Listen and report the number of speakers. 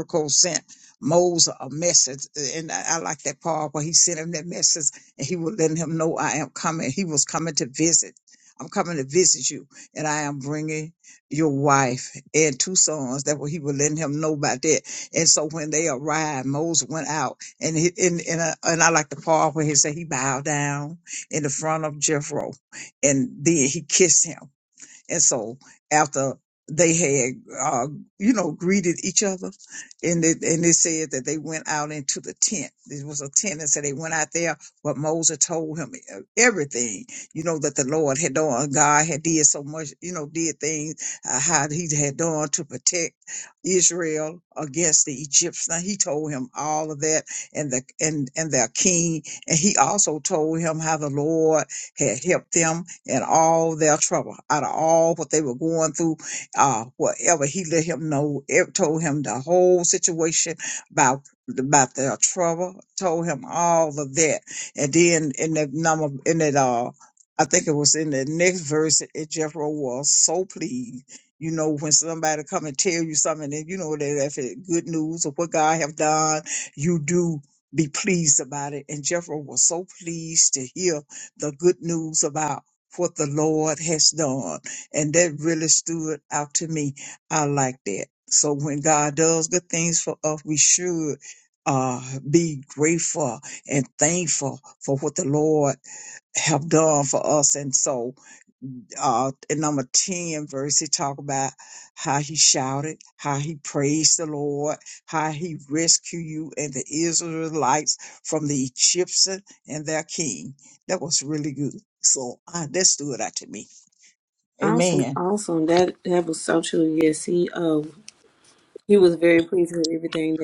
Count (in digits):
2